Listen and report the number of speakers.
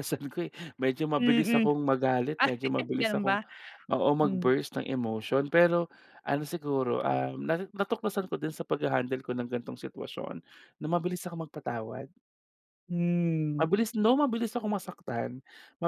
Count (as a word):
two